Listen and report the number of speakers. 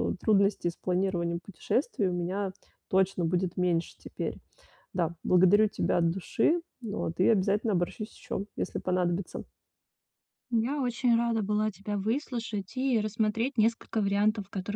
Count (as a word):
two